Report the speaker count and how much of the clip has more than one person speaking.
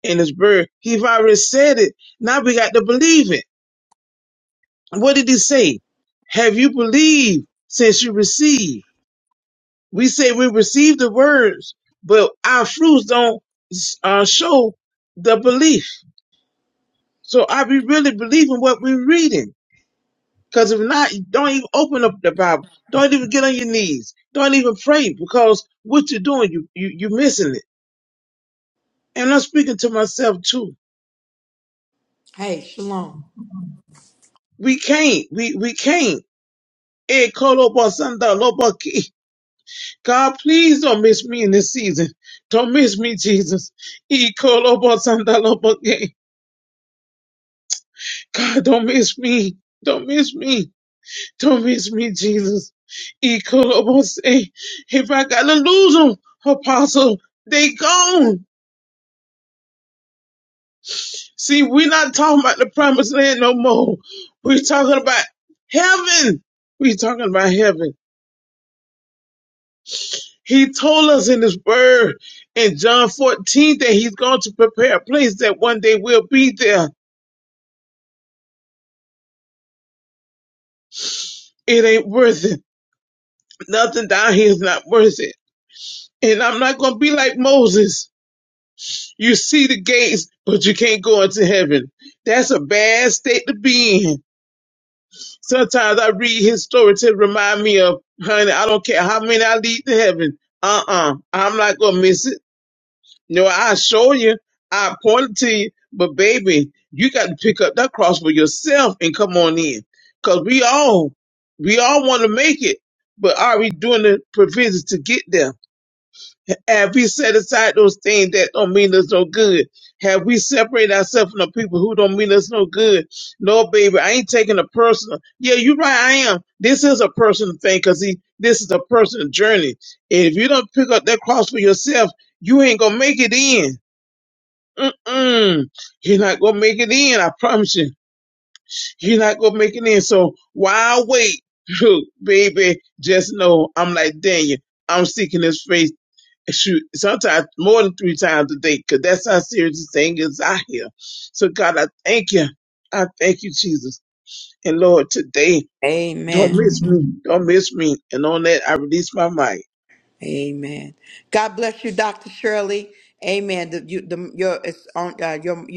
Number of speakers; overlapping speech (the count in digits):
2, under 1%